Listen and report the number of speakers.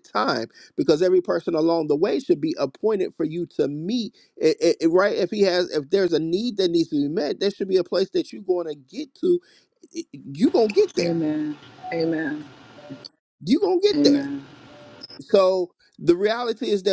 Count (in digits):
2